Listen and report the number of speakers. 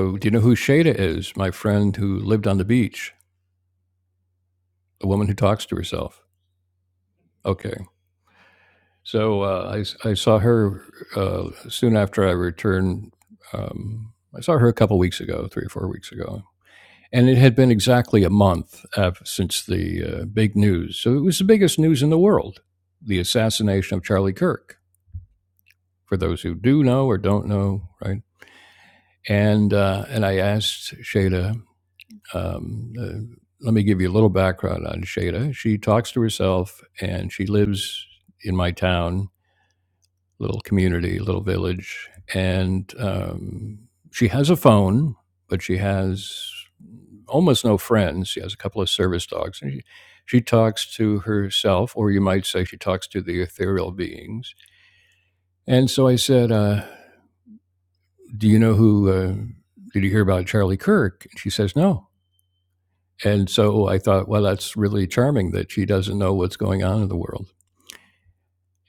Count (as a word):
one